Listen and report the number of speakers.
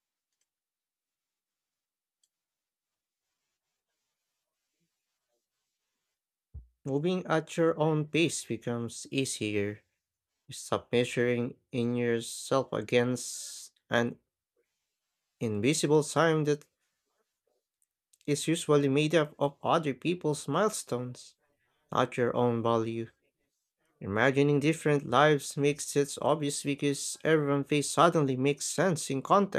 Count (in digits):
1